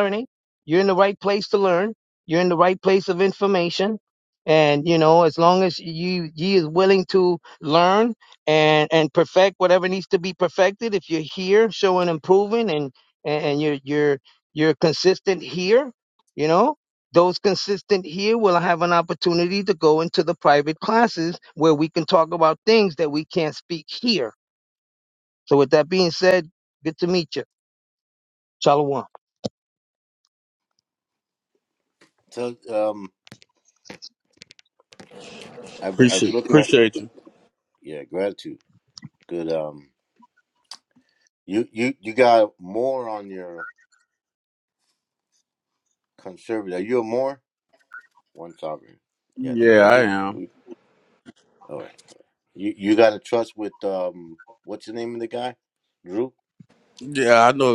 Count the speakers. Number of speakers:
three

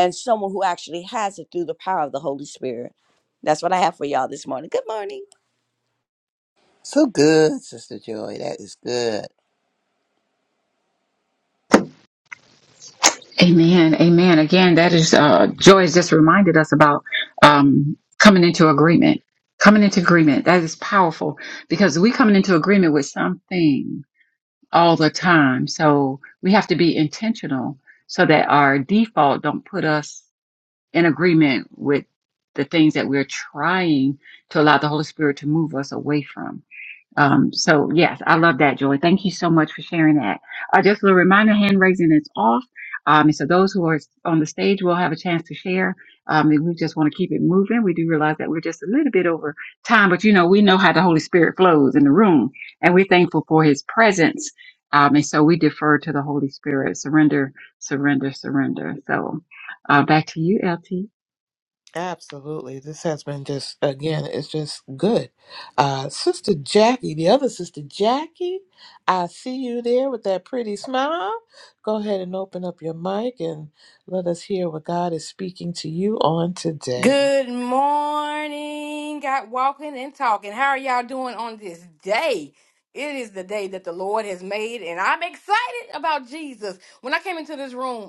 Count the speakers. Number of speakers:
five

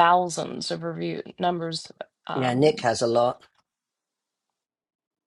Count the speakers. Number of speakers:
two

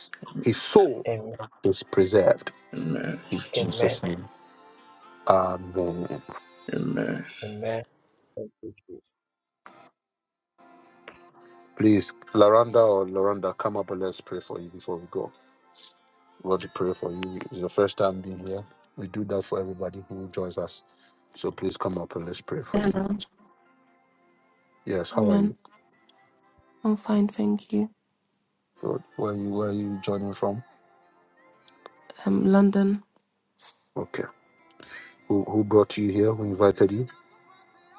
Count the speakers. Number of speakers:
four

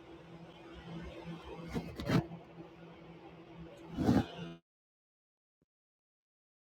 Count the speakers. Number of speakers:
zero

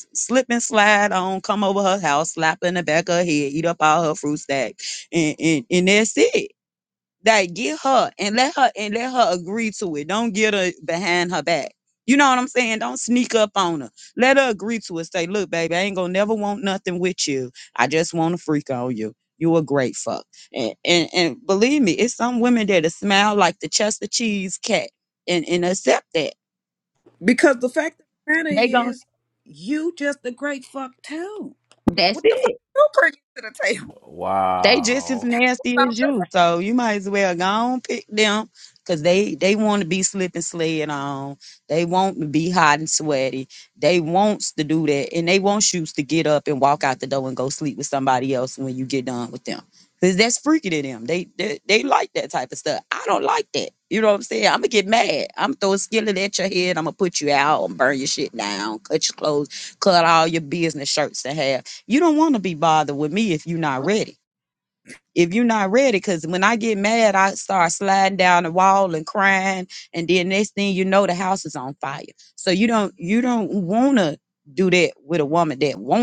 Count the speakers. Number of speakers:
three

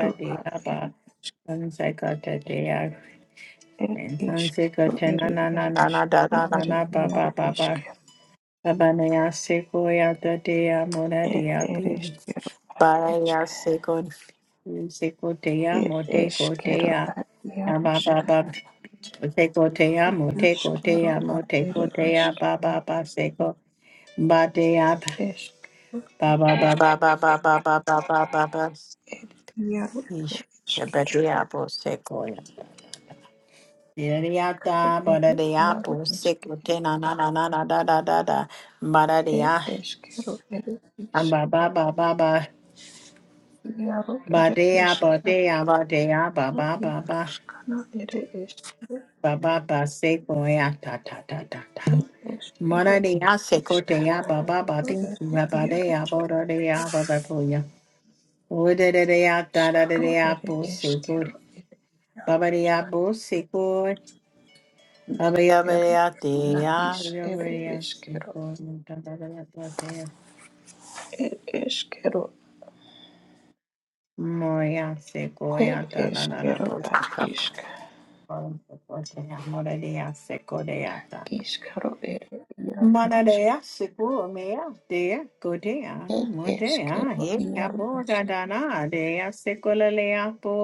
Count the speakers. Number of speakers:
two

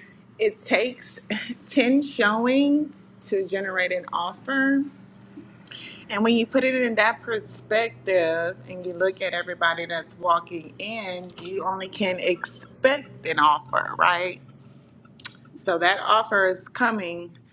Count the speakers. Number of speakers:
one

